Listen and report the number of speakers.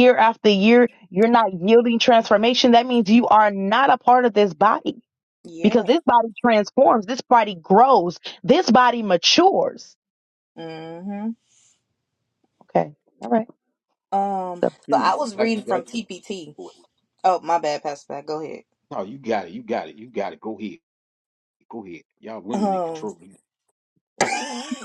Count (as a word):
three